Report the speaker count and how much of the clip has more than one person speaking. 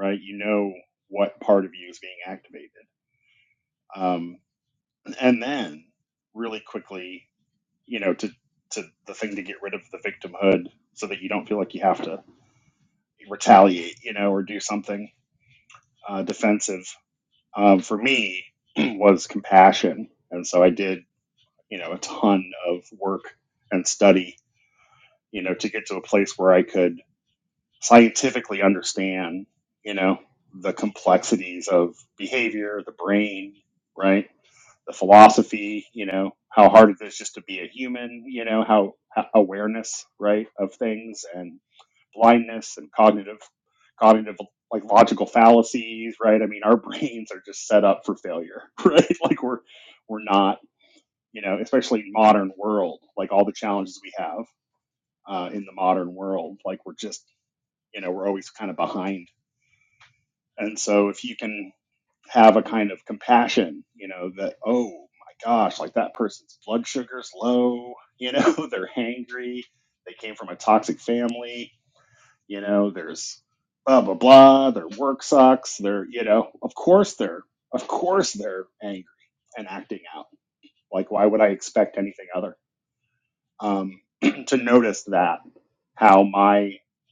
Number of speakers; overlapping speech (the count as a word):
one, no overlap